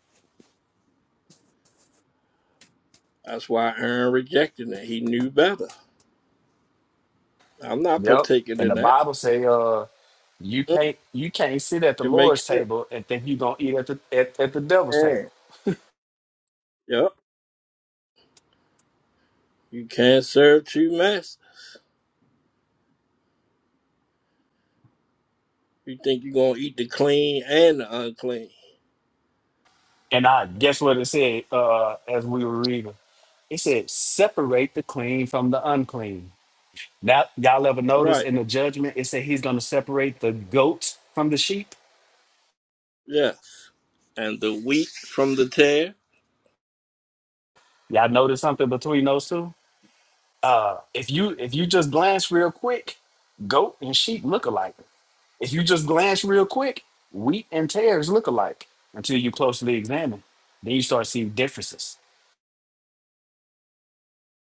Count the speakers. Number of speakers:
two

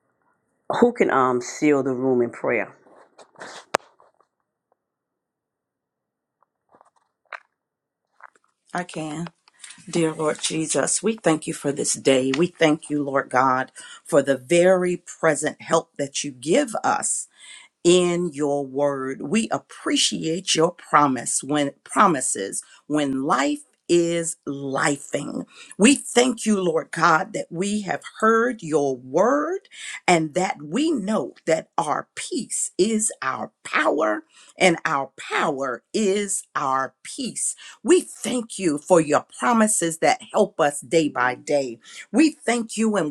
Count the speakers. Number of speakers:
two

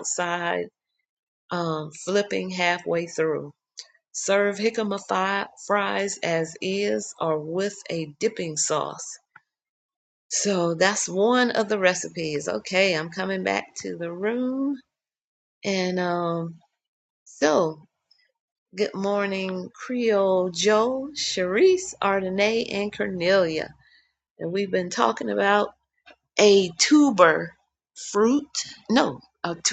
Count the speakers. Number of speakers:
one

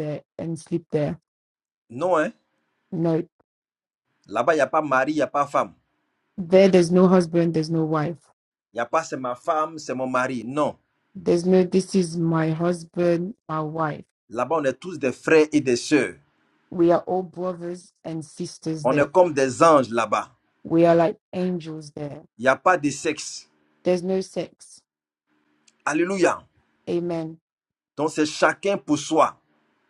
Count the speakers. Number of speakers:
two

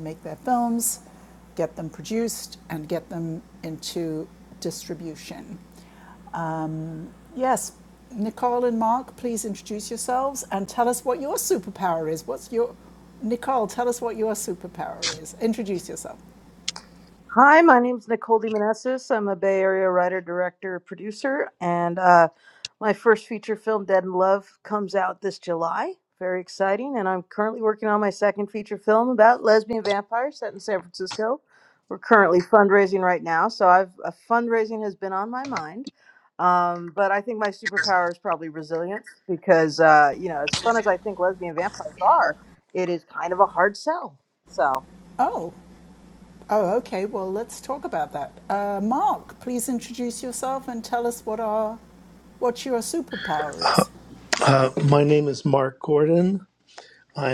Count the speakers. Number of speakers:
three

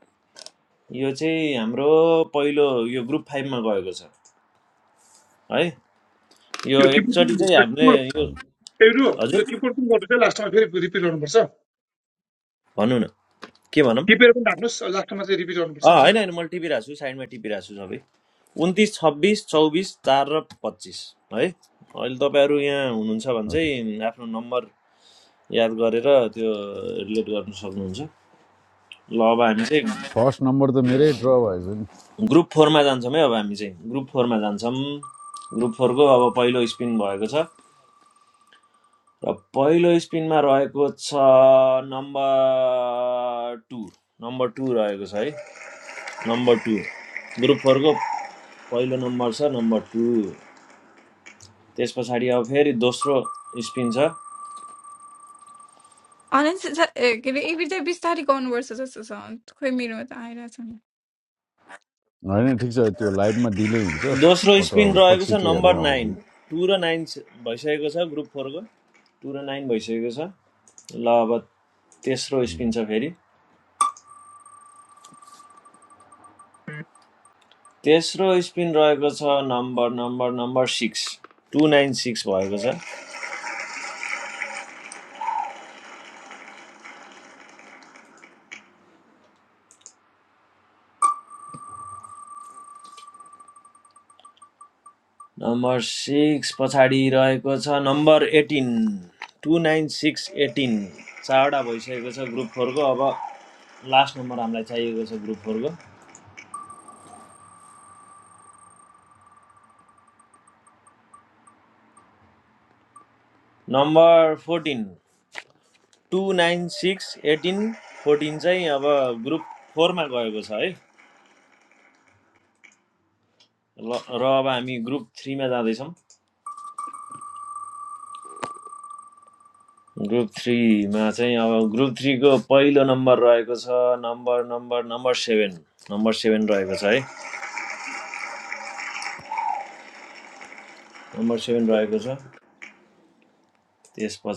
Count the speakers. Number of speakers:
four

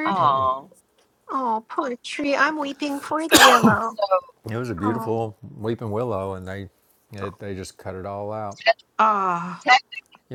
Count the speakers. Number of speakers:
three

